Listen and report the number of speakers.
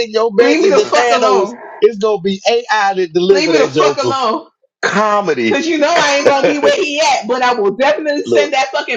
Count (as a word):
two